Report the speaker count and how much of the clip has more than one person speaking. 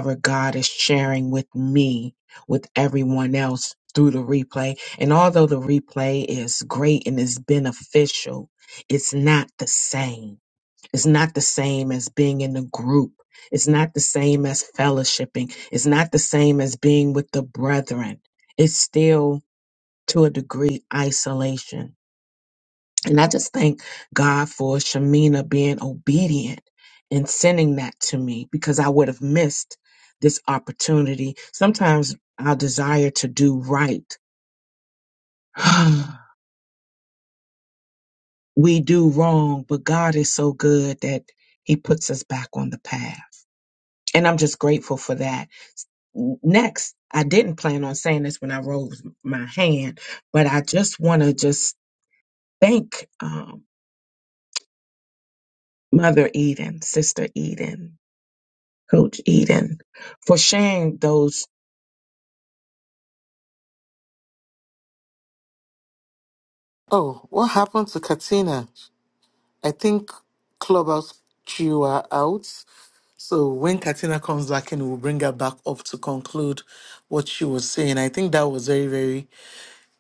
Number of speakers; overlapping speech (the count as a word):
two, no overlap